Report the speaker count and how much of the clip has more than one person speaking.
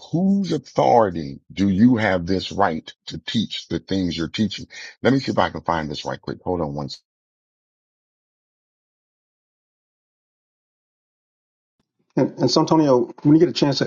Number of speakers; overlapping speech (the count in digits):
2, no overlap